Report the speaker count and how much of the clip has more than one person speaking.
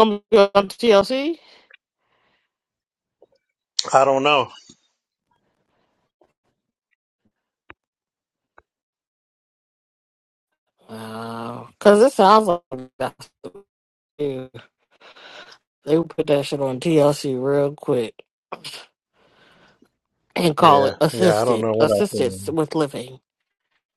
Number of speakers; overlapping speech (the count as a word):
two, about 7%